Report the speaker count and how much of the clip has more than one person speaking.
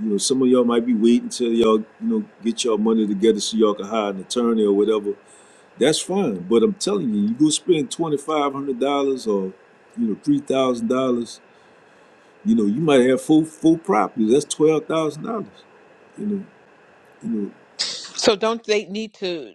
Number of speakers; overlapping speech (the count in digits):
2, no overlap